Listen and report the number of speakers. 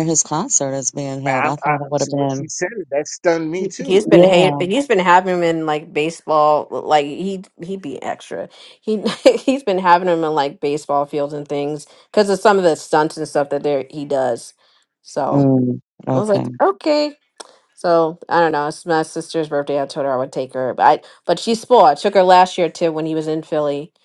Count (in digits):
3